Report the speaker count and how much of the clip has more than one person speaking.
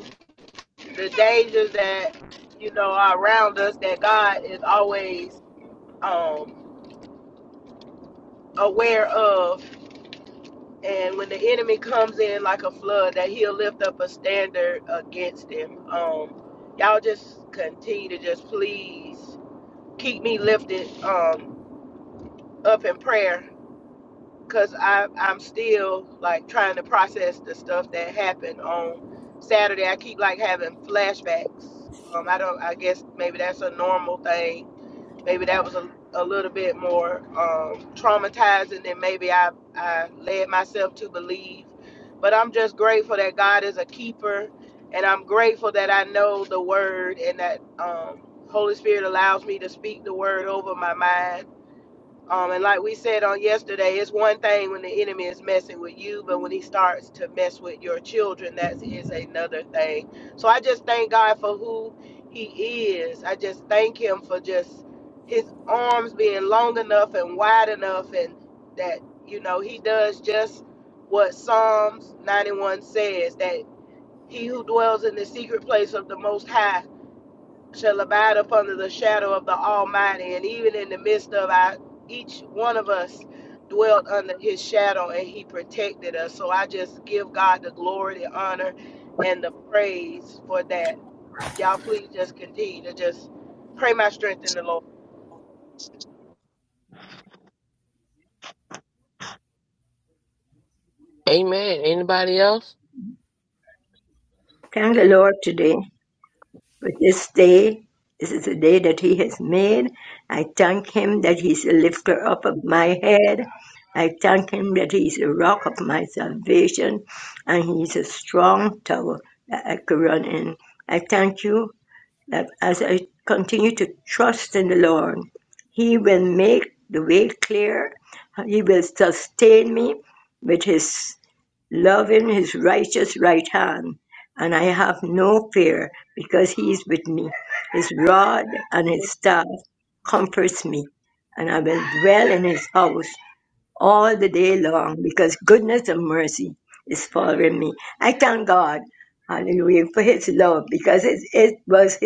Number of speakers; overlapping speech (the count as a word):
three, no overlap